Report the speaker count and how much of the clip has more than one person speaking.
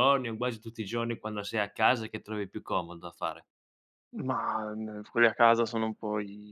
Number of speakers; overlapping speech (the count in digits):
2, no overlap